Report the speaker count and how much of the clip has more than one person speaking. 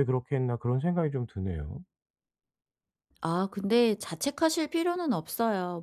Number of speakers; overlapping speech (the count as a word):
two, no overlap